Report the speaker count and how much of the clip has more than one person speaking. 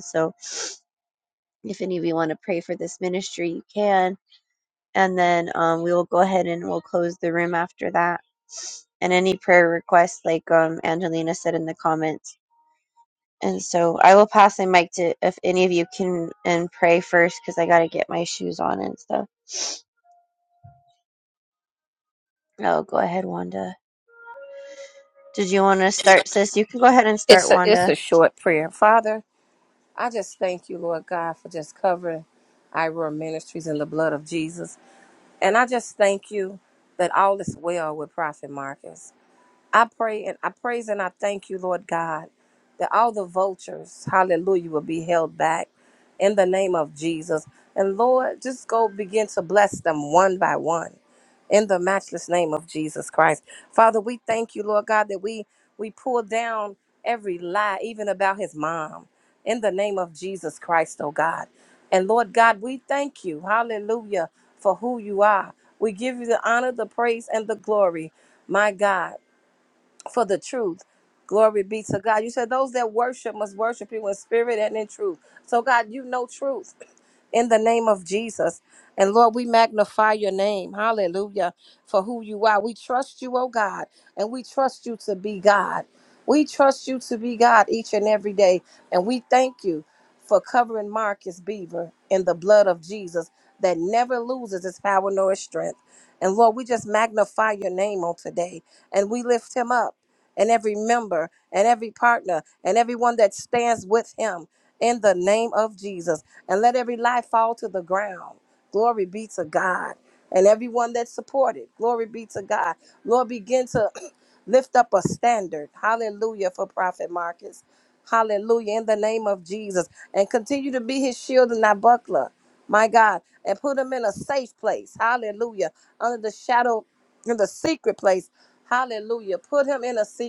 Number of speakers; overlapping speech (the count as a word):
two, about 1%